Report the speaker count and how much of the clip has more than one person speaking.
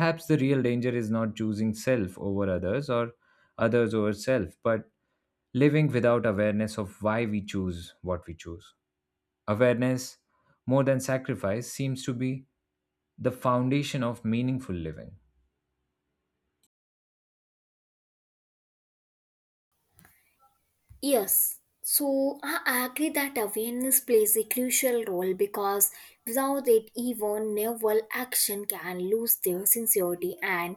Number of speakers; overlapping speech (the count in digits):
2, no overlap